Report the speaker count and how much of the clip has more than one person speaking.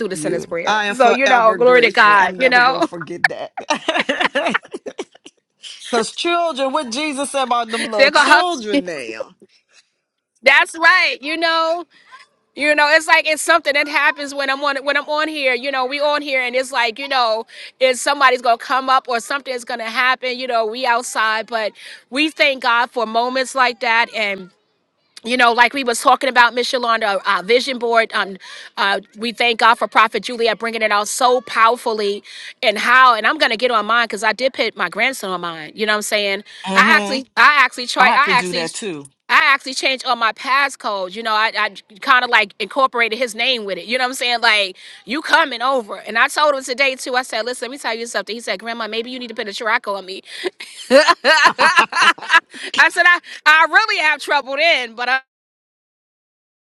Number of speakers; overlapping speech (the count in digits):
2, about 8%